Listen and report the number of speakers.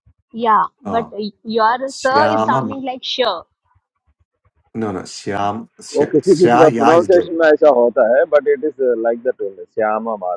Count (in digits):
3